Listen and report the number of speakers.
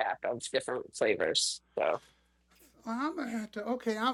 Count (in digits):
2